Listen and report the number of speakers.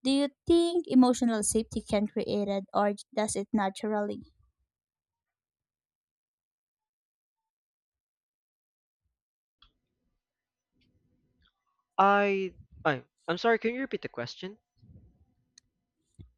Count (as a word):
two